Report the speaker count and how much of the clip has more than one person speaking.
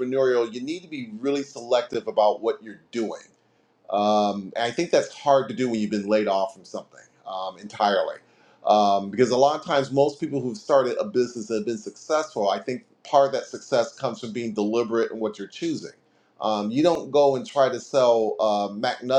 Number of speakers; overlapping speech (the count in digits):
1, no overlap